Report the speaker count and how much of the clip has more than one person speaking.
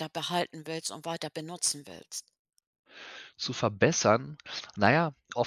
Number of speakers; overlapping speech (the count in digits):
2, no overlap